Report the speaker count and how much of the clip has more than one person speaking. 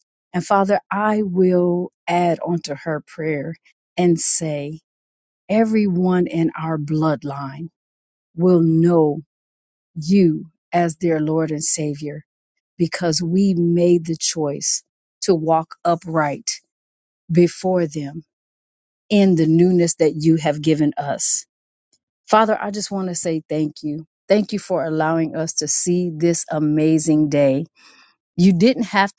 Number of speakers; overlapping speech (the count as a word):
one, no overlap